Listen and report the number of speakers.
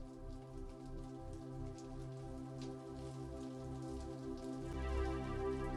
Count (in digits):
0